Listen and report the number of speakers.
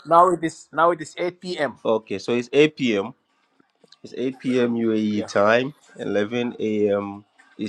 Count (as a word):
two